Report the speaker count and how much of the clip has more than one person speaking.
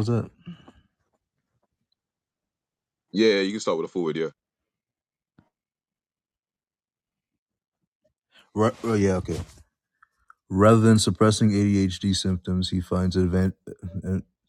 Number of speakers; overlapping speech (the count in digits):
2, no overlap